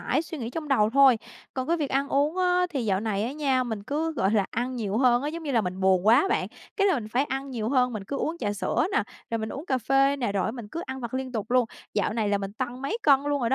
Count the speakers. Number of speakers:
one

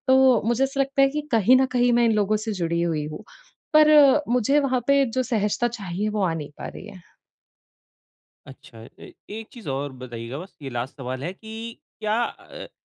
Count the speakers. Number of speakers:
two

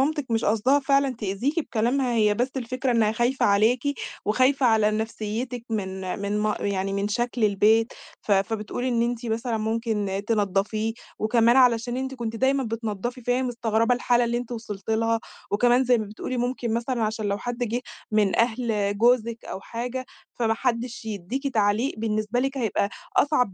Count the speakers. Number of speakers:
one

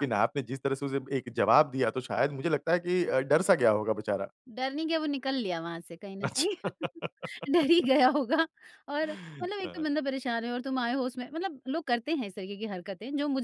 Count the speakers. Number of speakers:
two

